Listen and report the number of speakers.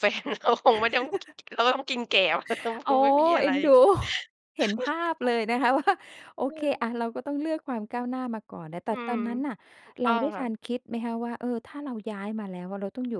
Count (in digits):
2